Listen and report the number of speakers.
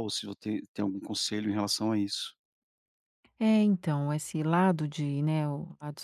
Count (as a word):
two